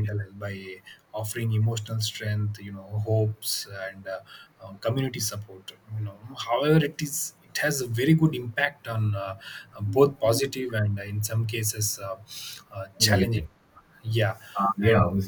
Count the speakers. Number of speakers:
two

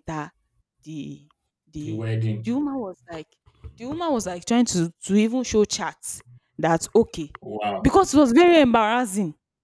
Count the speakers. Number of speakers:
two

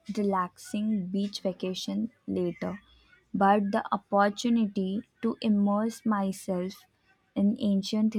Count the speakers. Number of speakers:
one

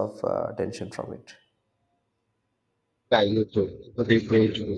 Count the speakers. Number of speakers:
two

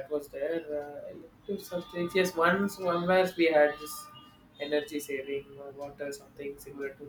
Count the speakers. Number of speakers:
one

